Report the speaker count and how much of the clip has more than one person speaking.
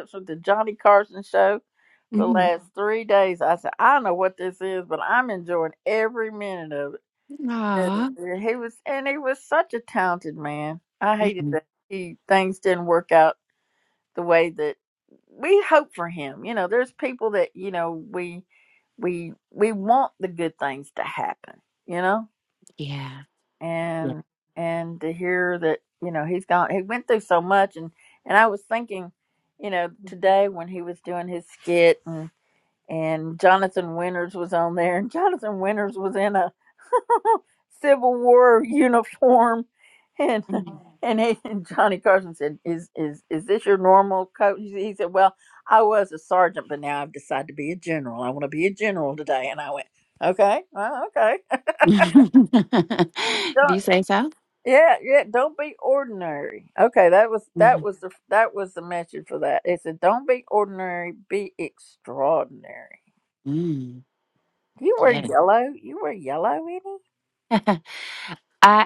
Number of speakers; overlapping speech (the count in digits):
2, about 2%